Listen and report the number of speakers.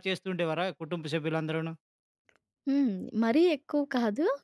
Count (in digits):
2